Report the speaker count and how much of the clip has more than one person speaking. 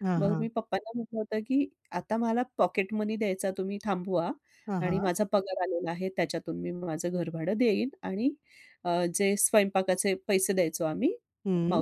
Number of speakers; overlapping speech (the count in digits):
2, about 6%